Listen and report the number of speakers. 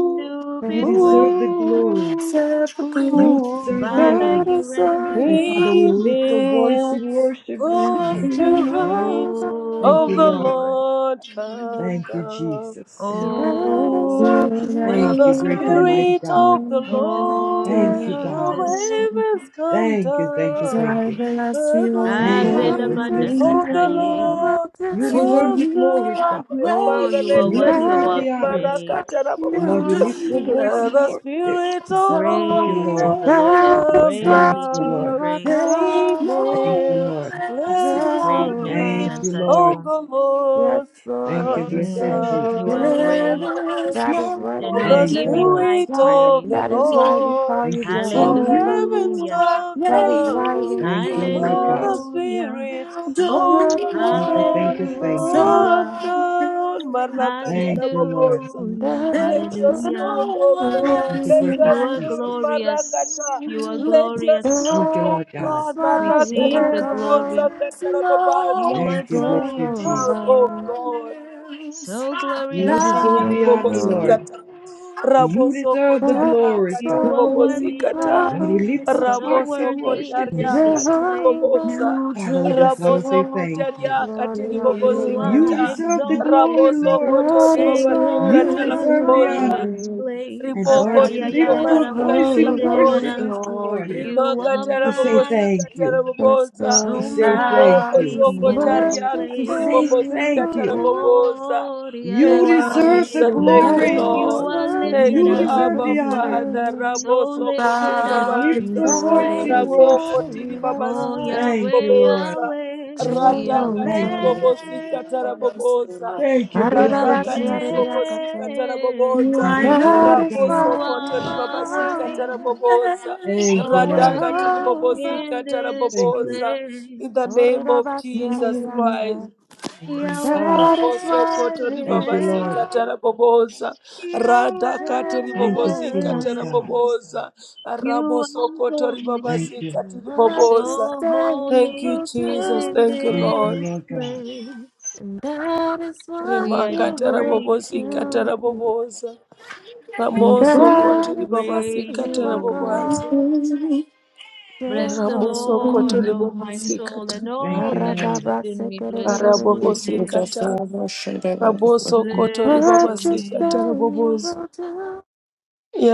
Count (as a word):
five